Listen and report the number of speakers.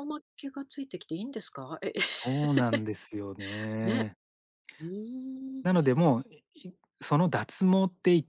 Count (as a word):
two